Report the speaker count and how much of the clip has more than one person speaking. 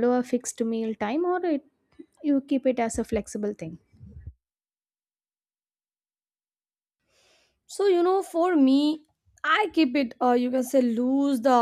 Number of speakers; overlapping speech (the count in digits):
2, no overlap